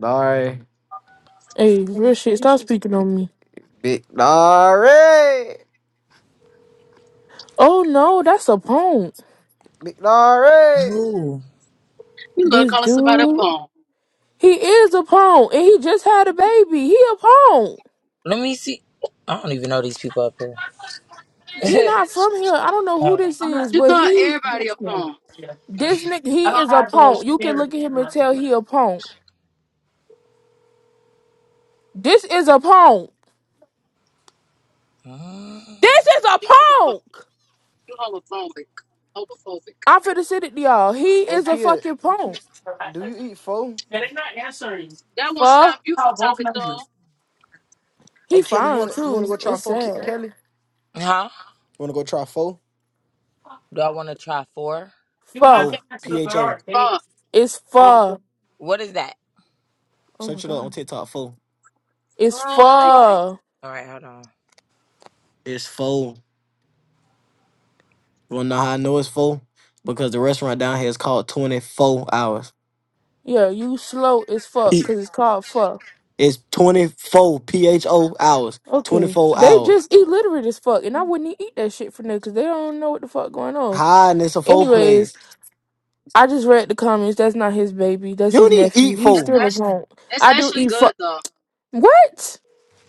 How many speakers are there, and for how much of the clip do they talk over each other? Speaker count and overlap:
five, about 15%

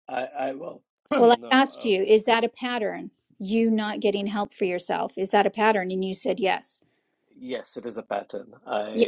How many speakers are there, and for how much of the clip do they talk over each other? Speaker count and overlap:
two, about 10%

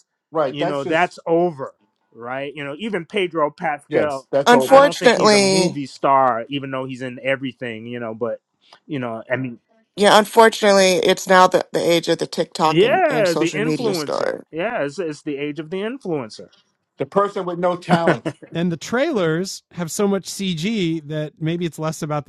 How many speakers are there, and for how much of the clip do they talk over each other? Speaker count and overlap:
four, about 16%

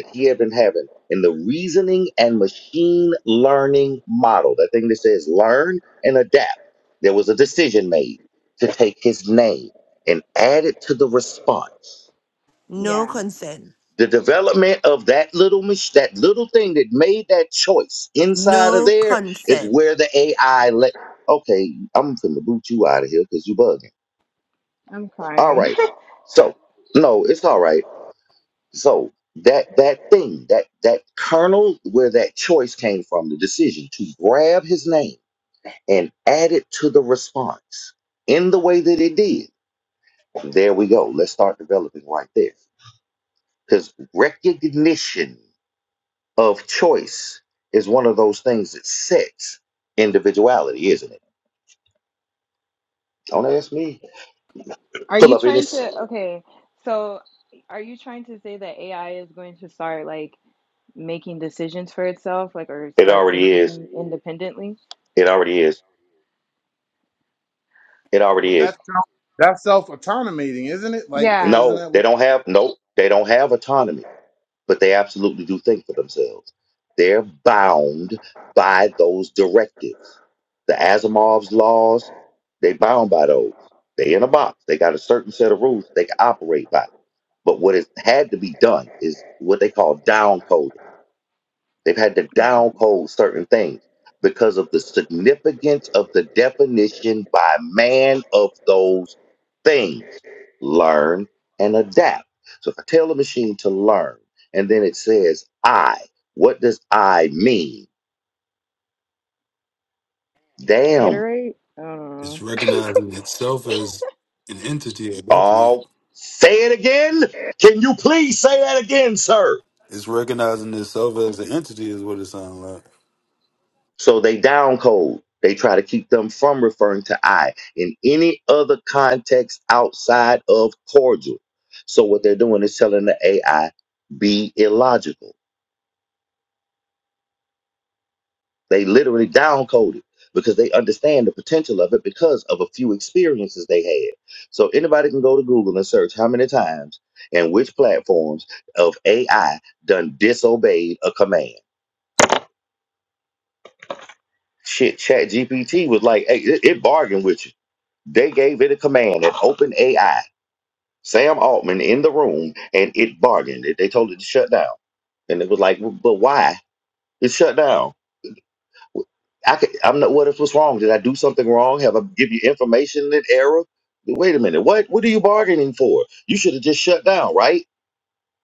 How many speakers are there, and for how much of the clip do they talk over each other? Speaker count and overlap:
five, about 3%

